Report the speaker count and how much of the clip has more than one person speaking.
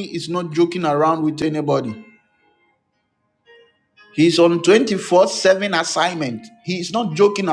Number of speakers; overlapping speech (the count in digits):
1, no overlap